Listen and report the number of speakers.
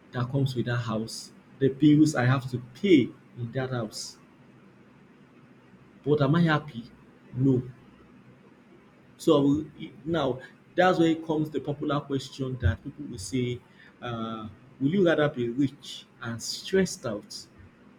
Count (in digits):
1